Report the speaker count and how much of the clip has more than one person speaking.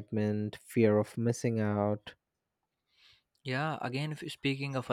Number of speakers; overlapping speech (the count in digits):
2, no overlap